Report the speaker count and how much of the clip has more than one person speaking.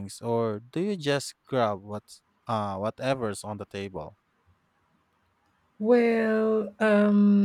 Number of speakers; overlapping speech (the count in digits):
2, no overlap